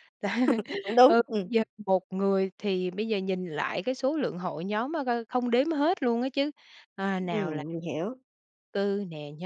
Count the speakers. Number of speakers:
2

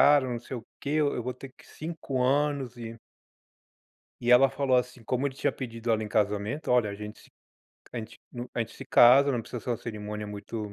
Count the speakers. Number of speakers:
1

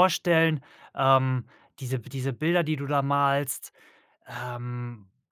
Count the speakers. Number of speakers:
1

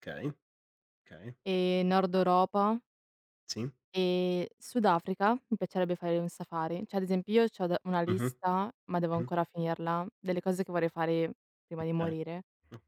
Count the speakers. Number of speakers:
2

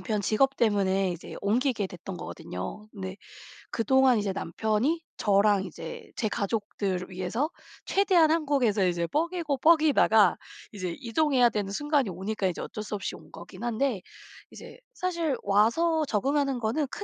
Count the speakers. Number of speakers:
1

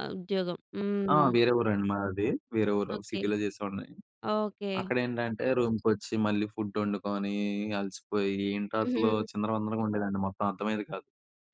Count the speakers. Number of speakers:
2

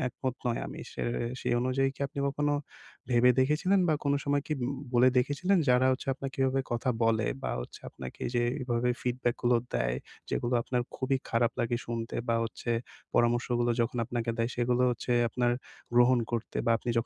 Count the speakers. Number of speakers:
1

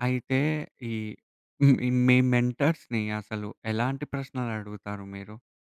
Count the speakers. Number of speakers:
1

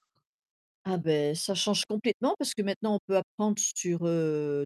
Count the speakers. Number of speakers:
1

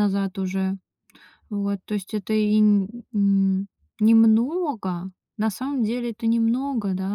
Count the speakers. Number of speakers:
1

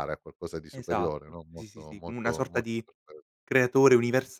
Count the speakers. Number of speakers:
2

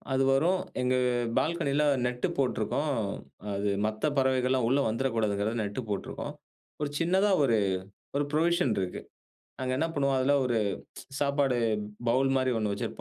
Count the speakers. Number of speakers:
1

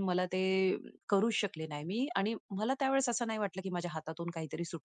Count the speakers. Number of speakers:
1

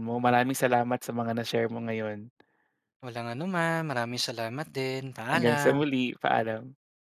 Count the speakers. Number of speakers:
2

